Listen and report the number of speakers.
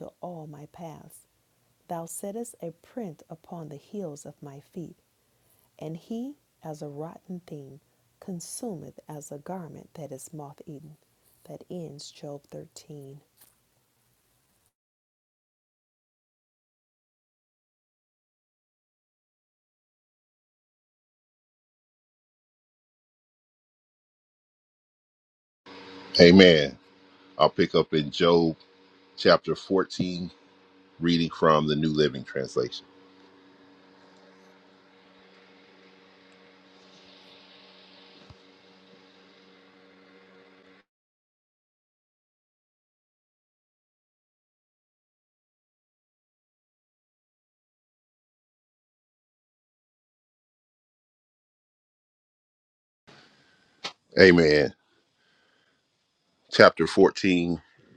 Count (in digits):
2